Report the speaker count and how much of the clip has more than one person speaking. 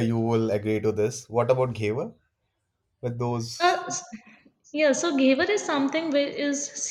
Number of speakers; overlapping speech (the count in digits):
2, no overlap